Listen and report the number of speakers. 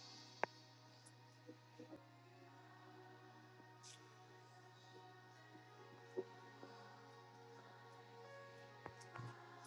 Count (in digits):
0